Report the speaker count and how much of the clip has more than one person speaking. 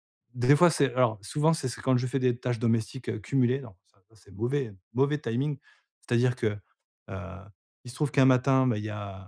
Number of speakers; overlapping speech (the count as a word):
one, no overlap